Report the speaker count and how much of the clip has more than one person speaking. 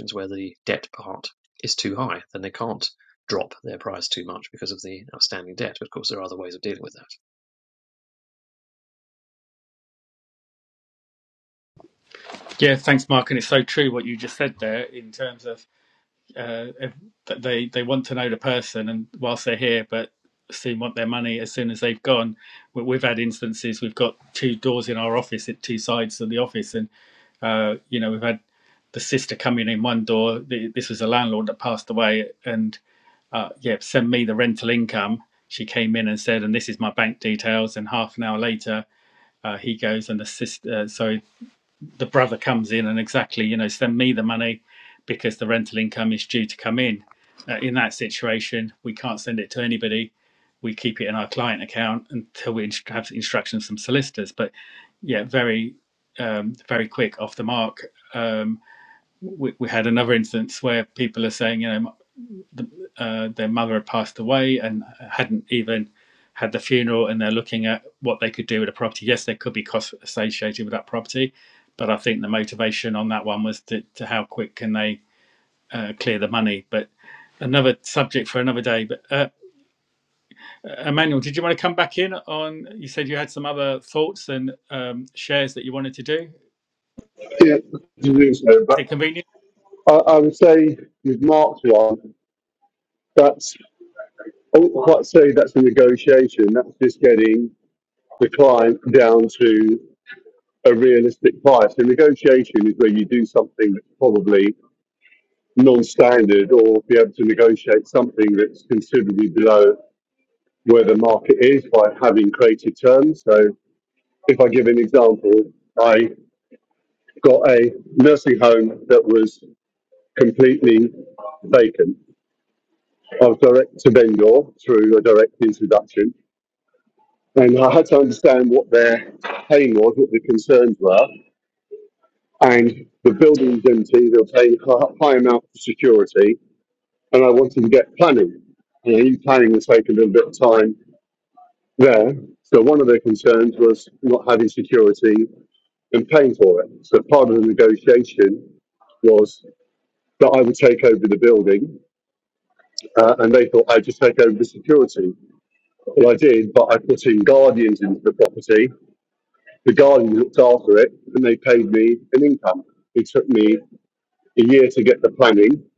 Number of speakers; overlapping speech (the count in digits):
3, under 1%